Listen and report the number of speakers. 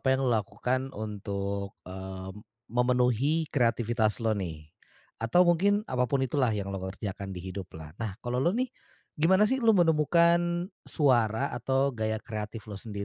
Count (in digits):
1